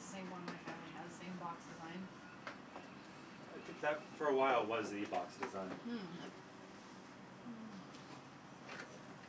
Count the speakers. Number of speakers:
2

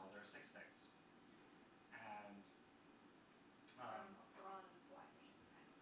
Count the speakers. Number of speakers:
2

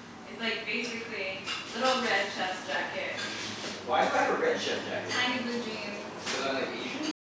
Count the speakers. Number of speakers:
1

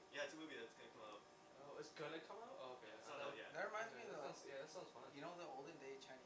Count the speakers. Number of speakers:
3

